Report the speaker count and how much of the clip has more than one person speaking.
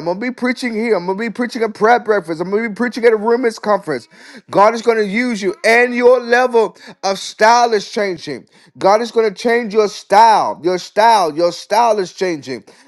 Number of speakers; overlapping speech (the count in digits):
1, no overlap